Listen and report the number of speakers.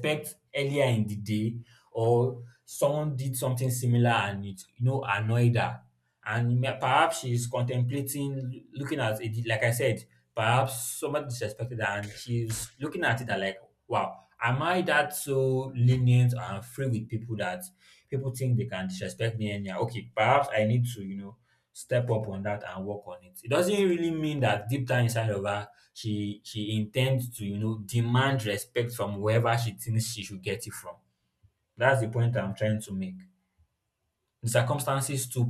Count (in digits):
1